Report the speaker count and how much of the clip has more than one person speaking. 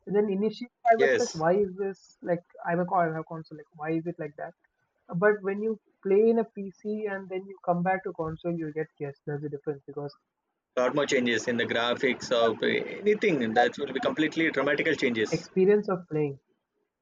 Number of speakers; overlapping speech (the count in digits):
2, about 3%